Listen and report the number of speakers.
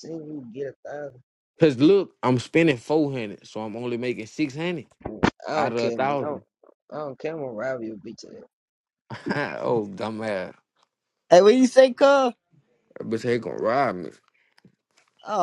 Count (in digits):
3